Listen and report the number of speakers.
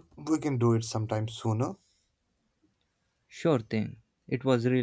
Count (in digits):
2